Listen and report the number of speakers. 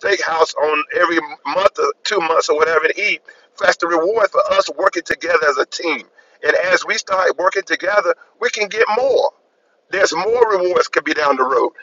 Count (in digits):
1